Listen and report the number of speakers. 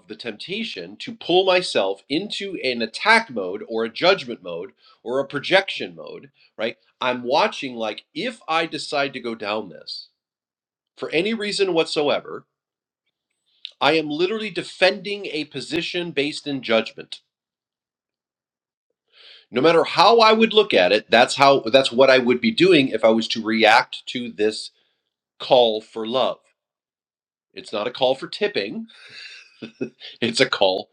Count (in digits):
1